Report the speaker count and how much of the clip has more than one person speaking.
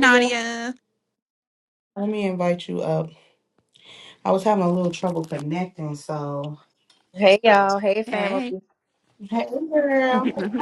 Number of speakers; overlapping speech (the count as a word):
three, about 7%